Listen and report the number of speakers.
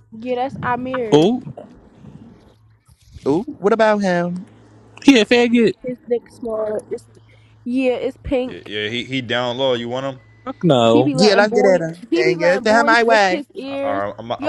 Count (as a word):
four